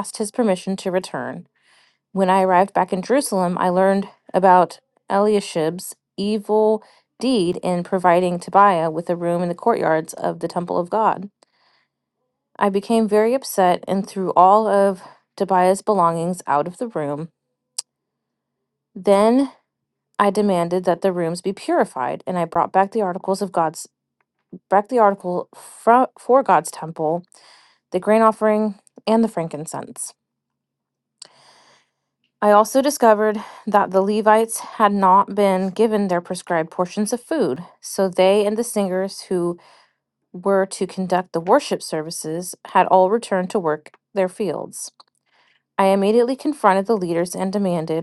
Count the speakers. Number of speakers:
one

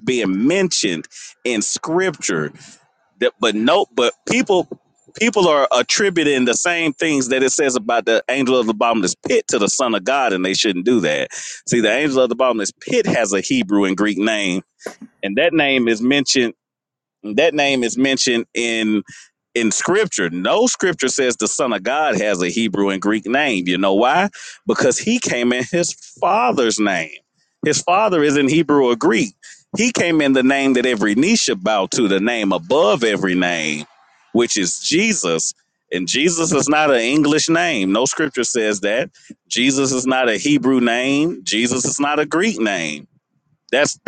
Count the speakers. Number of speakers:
one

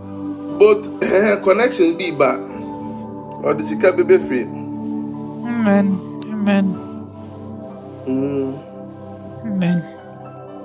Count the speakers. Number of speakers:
two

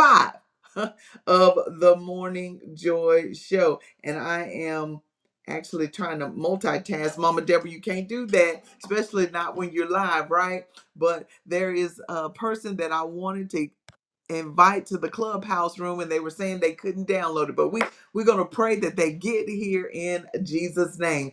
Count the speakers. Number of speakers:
one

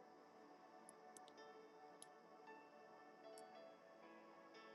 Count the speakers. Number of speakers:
zero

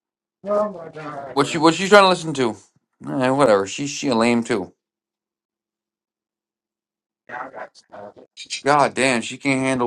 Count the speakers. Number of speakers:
two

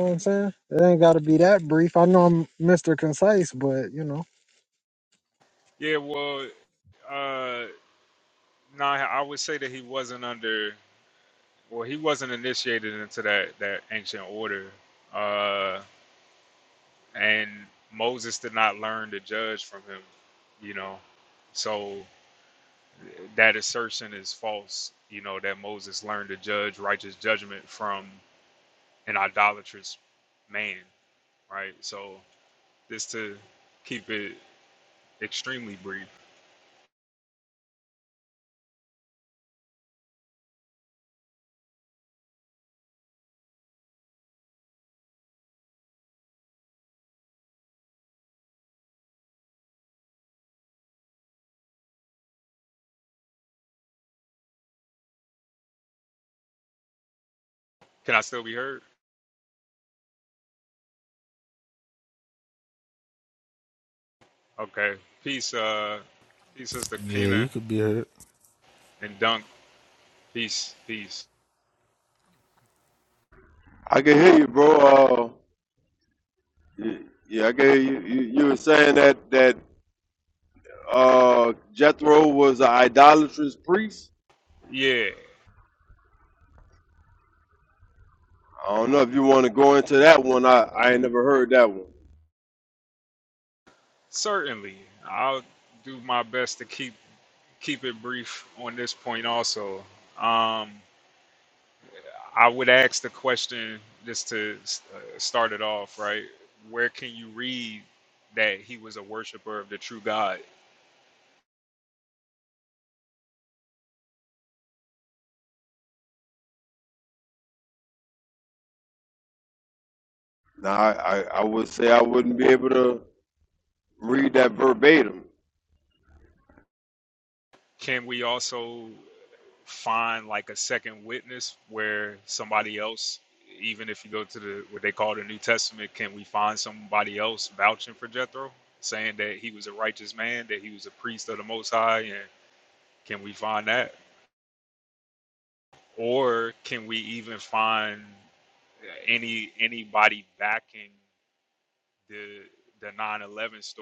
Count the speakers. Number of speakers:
four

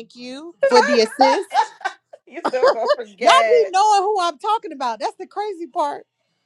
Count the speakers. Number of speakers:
two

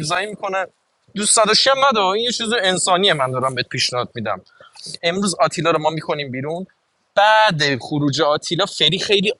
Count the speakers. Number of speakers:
one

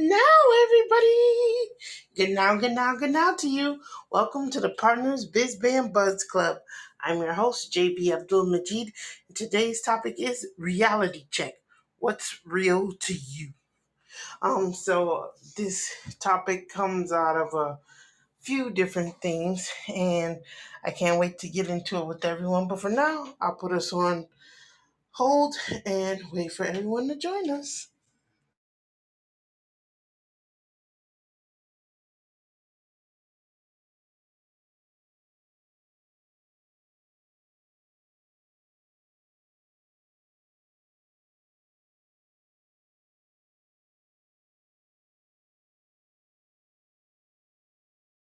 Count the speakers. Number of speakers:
one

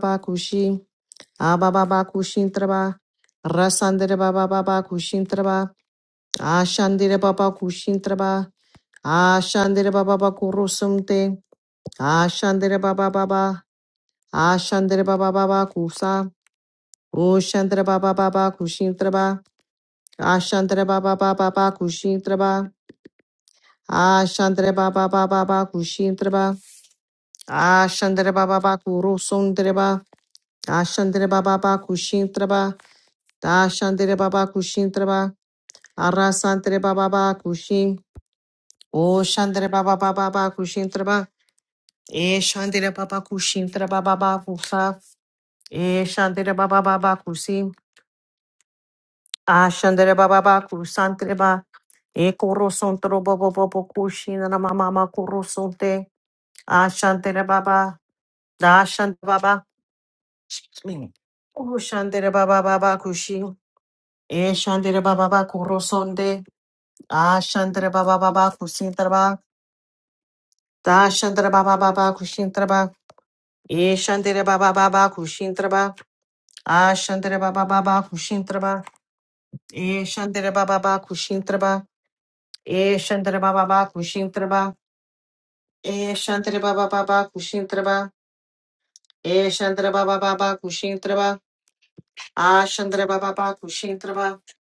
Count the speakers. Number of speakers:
one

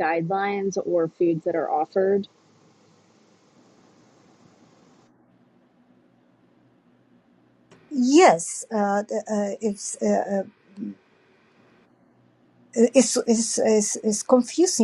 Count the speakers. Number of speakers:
two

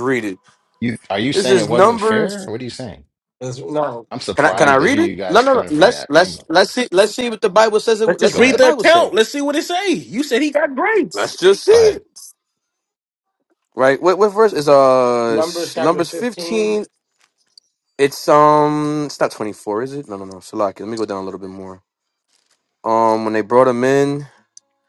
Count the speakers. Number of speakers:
four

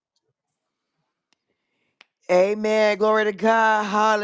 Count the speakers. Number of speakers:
one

